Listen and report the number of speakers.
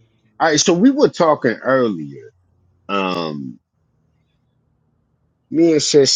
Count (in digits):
1